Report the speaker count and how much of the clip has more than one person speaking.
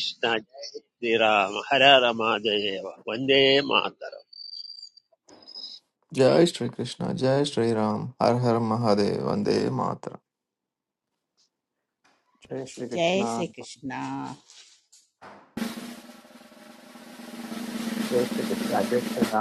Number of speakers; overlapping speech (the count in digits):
4, about 3%